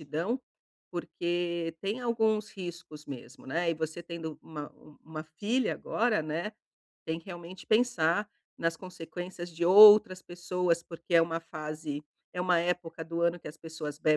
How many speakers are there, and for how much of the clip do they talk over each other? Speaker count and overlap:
1, no overlap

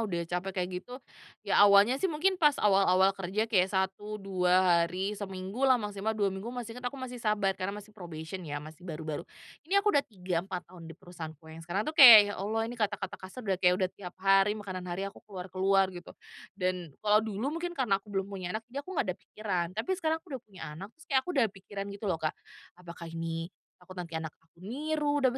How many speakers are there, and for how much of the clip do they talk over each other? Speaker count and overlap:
1, no overlap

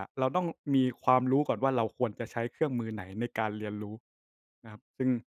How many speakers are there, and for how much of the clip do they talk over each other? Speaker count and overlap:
1, no overlap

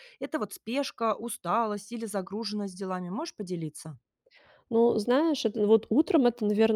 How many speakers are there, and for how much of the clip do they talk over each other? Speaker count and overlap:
2, no overlap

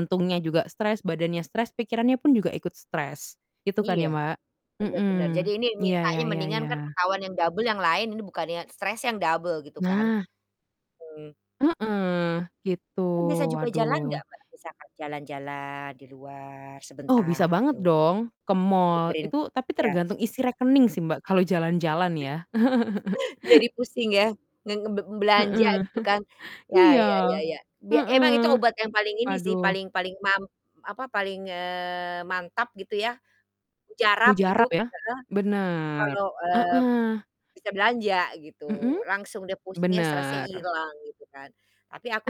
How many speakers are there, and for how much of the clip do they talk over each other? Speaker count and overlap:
2, about 20%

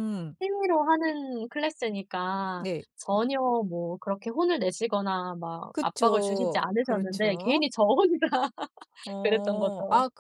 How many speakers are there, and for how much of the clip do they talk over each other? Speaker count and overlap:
2, about 26%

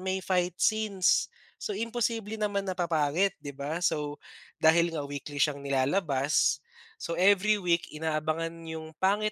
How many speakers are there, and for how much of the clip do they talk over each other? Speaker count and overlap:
1, no overlap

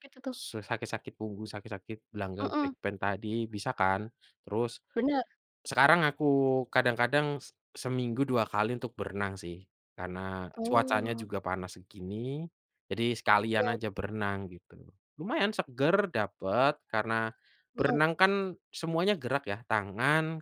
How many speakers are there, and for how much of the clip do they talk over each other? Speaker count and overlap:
2, about 7%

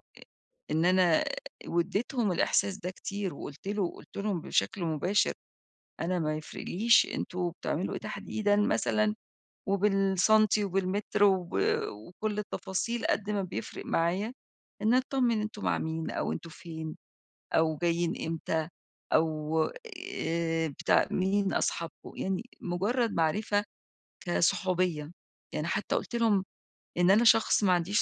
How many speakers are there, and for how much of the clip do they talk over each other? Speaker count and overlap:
1, no overlap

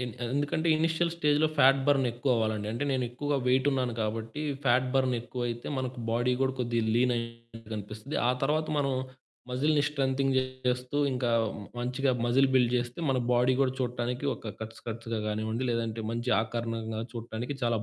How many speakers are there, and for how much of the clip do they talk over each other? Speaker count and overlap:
1, no overlap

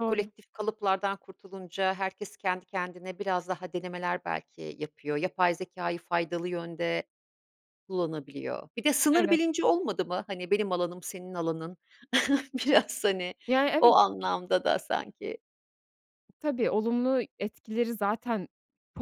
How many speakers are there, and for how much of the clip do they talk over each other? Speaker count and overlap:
2, about 3%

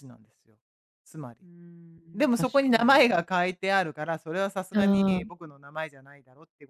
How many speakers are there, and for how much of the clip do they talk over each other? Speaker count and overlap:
2, about 17%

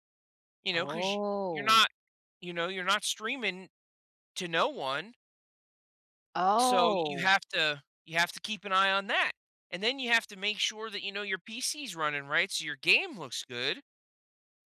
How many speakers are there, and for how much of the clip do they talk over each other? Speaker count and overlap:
2, about 9%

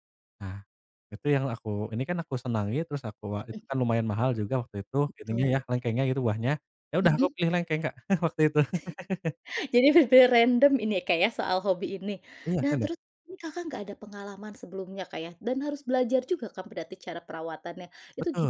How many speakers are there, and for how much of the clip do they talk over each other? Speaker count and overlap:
2, about 7%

